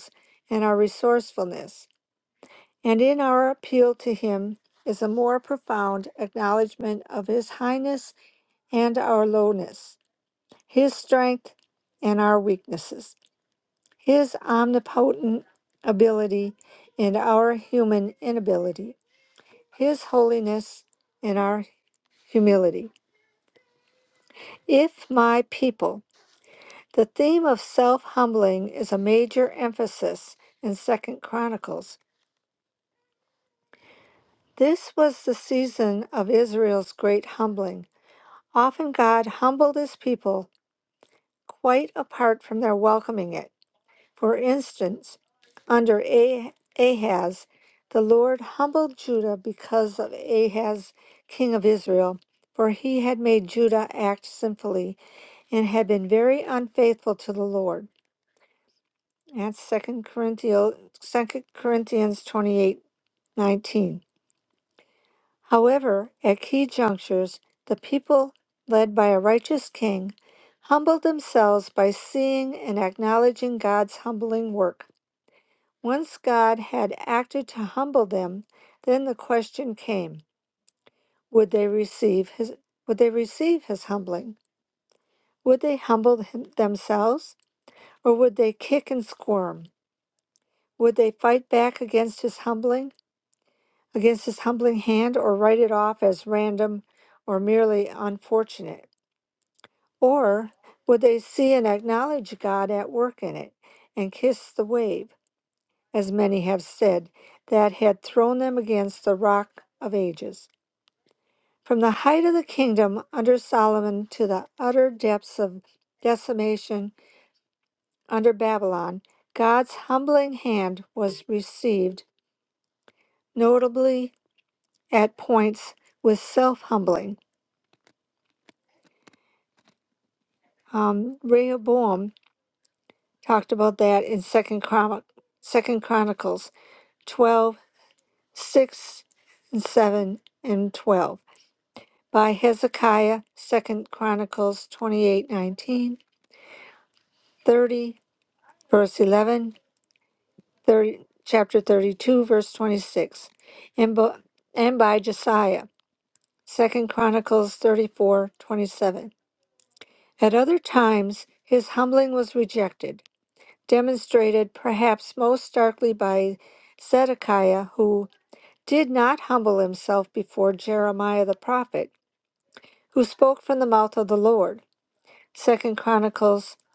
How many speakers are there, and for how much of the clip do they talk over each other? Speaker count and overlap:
1, no overlap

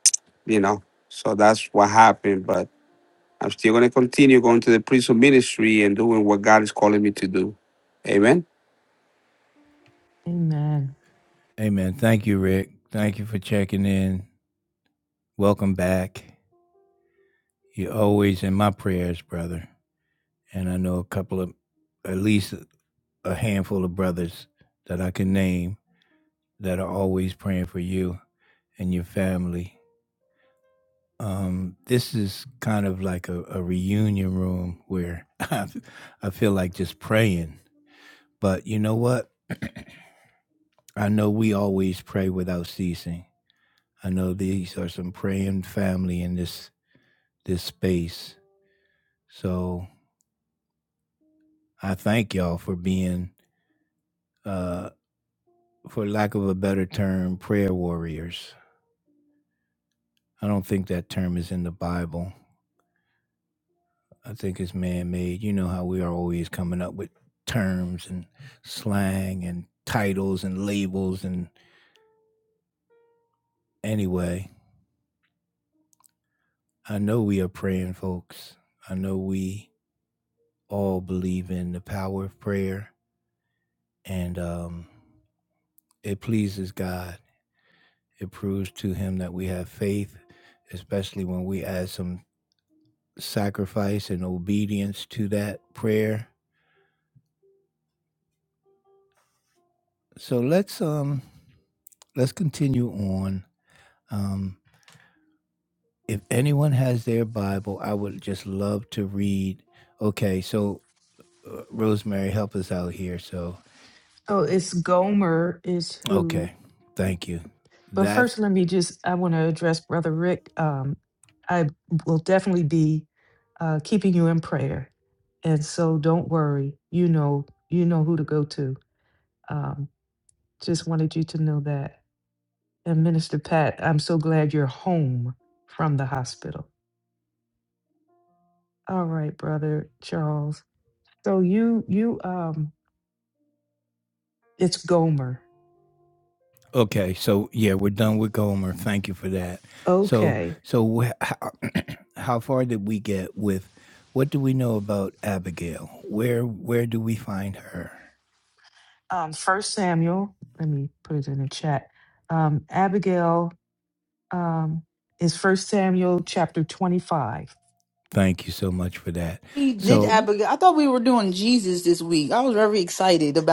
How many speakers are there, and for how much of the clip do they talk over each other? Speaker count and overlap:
4, about 1%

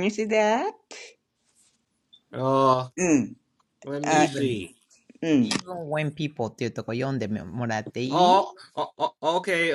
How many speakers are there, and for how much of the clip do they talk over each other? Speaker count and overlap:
3, about 11%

